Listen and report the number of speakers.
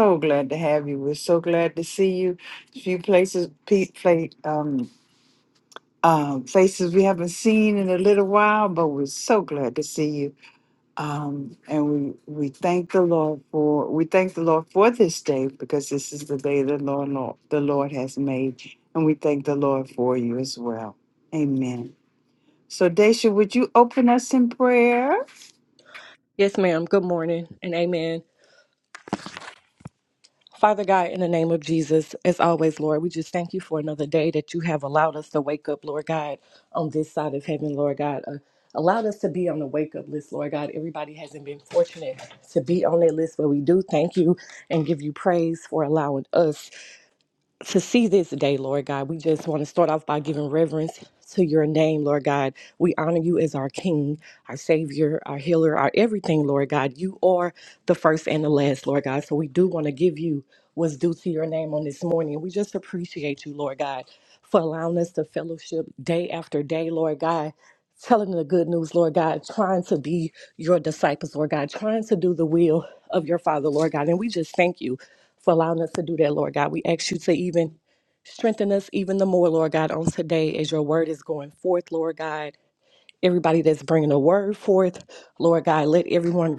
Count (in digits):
2